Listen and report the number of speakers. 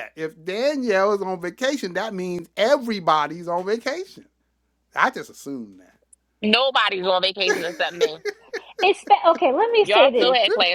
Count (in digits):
3